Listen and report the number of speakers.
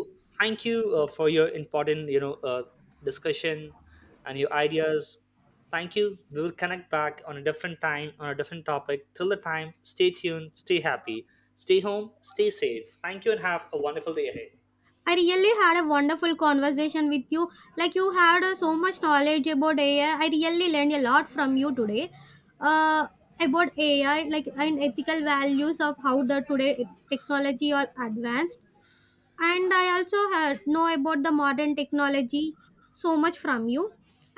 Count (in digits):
2